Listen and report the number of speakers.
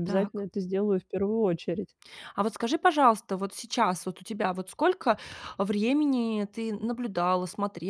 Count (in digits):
2